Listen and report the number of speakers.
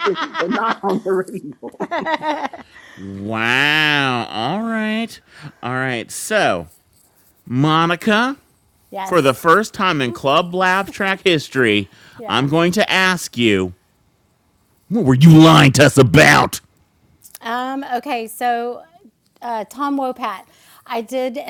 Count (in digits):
3